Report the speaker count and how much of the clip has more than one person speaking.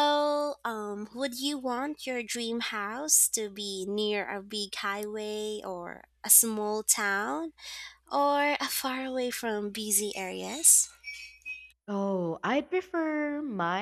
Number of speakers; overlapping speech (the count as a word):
two, no overlap